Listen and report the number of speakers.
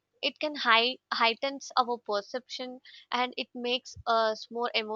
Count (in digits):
1